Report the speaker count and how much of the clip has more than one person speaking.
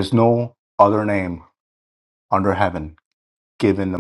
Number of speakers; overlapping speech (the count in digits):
1, no overlap